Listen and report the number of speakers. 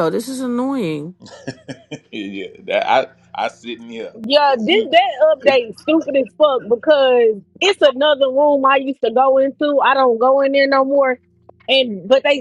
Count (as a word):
three